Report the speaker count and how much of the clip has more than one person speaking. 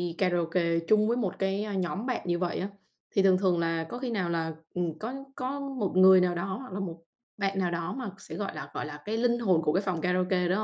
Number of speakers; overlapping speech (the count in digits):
1, no overlap